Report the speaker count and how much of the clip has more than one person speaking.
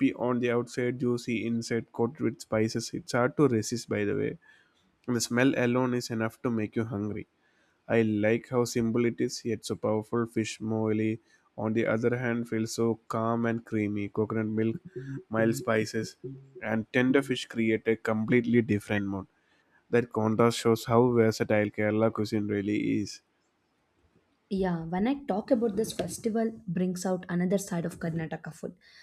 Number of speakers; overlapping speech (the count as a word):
two, no overlap